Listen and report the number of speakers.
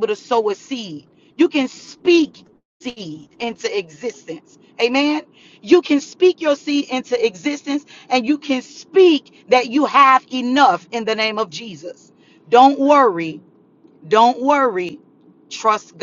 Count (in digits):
1